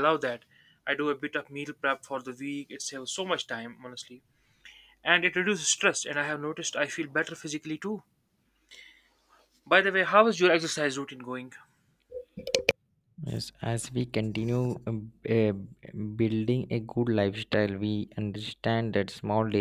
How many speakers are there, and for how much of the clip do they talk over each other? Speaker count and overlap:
2, no overlap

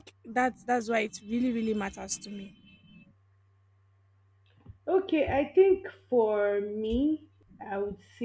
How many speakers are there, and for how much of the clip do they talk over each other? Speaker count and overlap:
2, no overlap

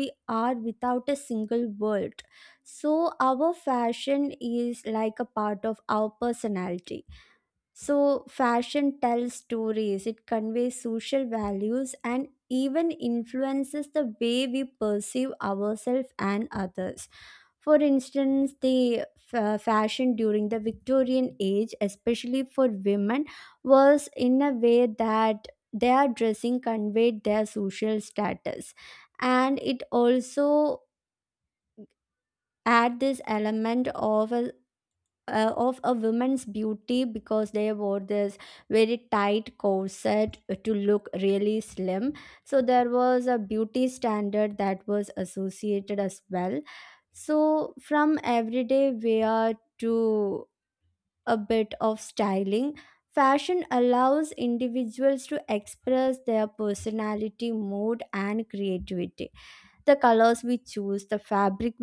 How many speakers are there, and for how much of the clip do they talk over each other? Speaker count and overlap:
1, no overlap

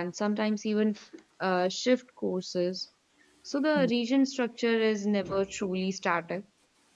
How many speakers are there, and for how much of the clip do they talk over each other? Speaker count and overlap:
1, no overlap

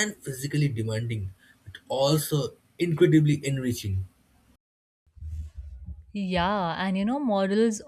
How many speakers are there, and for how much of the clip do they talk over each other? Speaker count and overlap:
2, no overlap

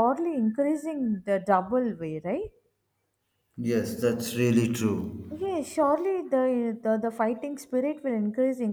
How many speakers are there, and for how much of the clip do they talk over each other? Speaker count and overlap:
2, under 1%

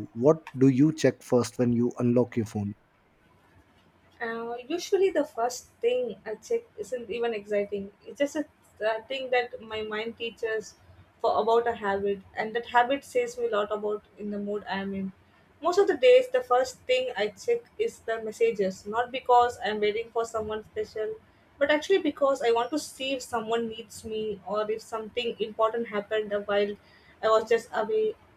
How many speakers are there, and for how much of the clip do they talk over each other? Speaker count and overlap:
2, no overlap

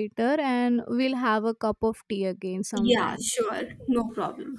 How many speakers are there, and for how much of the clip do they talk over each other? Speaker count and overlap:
2, about 14%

